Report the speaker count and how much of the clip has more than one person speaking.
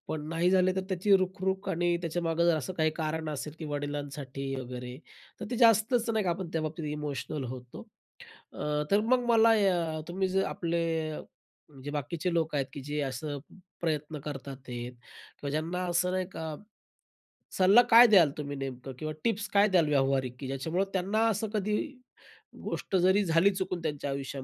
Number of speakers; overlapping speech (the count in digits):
1, no overlap